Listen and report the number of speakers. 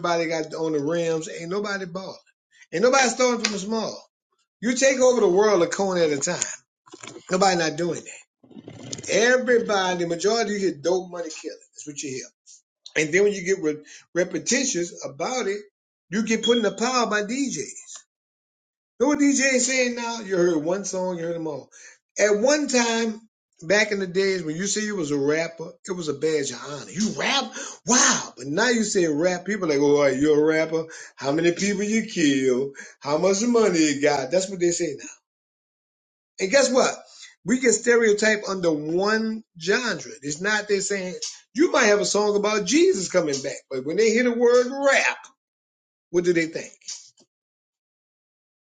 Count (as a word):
one